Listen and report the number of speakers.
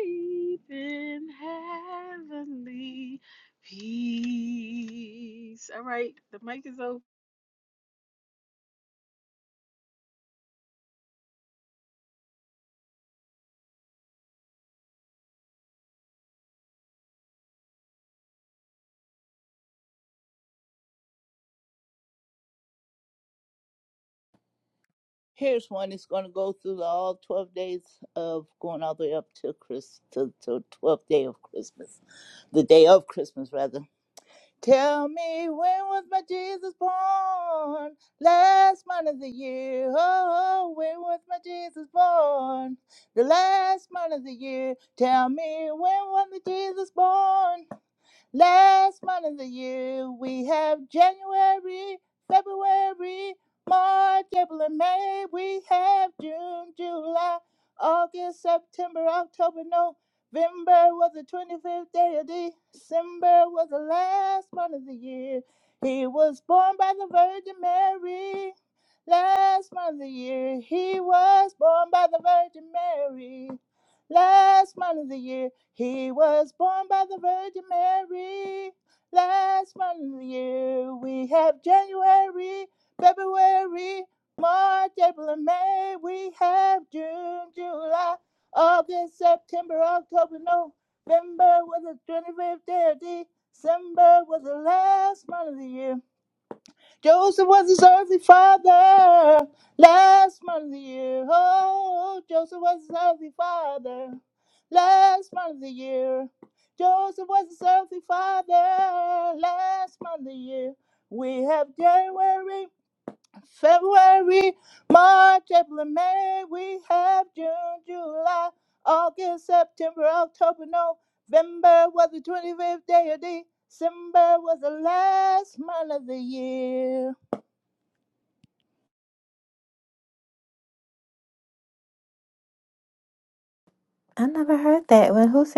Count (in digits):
3